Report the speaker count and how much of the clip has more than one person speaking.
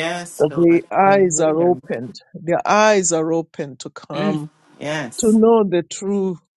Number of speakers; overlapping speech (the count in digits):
2, about 27%